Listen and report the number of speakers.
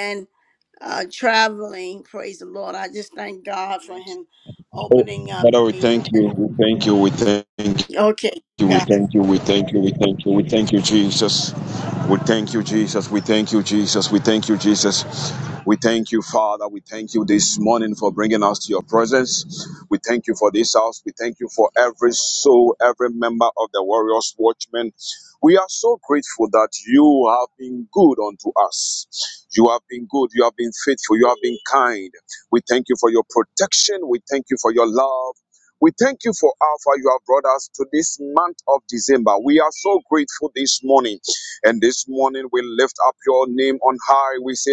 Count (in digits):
2